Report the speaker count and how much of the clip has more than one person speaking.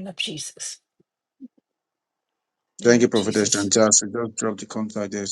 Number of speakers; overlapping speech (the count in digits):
2, about 15%